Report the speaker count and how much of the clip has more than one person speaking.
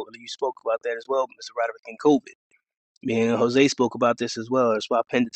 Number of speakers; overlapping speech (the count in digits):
1, no overlap